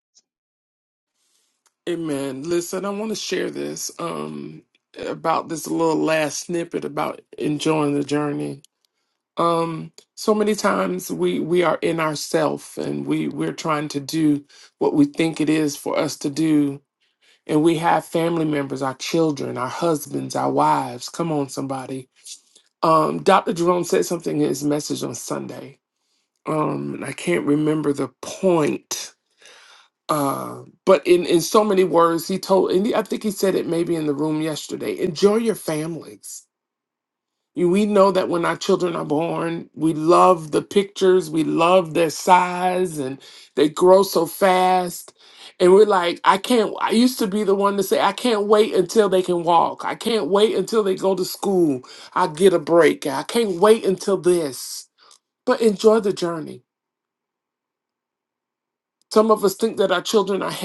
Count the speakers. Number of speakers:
one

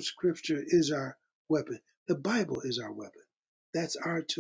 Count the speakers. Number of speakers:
one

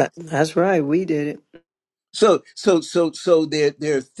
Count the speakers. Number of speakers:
two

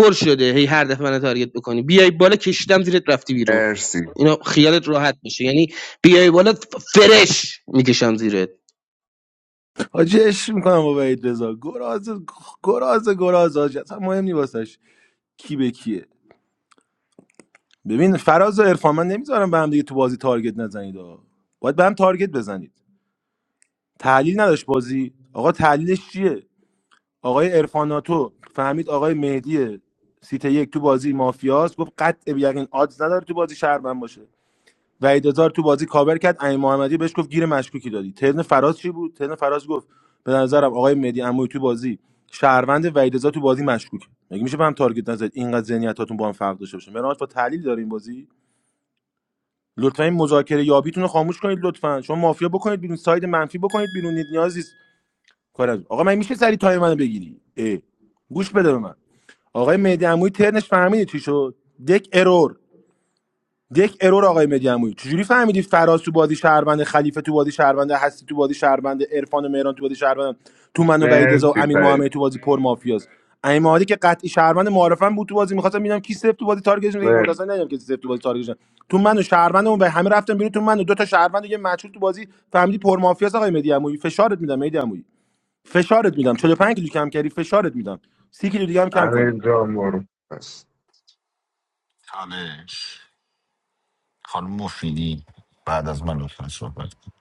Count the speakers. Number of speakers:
four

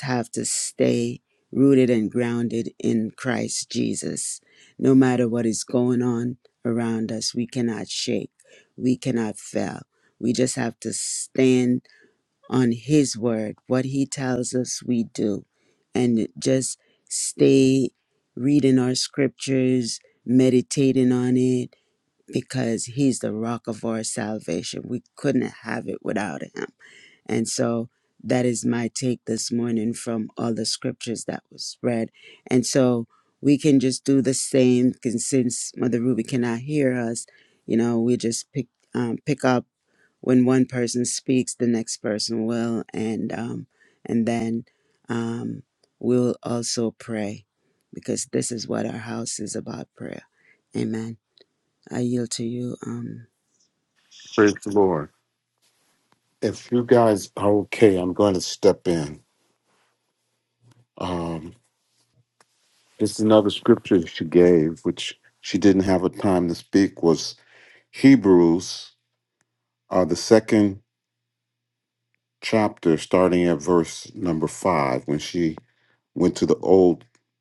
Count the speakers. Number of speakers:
two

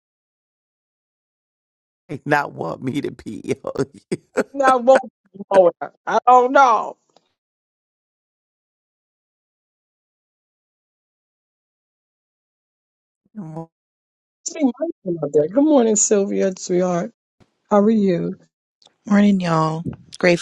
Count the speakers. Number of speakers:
three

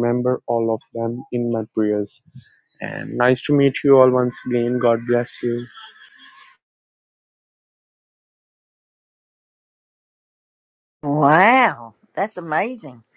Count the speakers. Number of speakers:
two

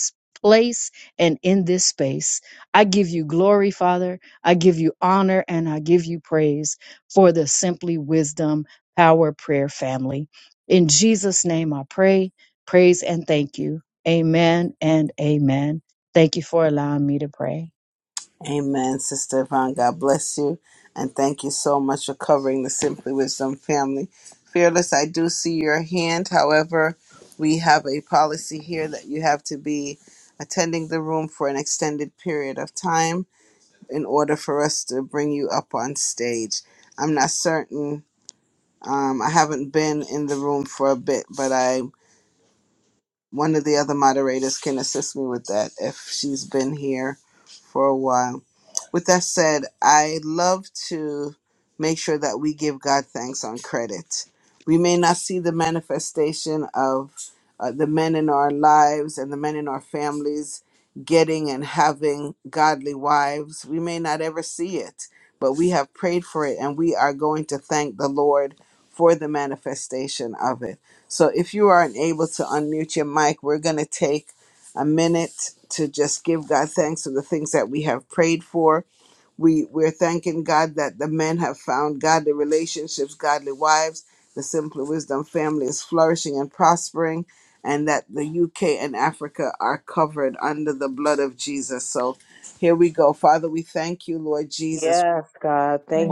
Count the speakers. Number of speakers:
three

